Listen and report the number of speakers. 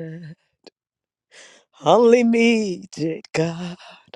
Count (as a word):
one